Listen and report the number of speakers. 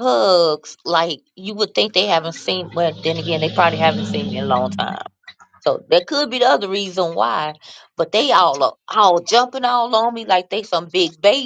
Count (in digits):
1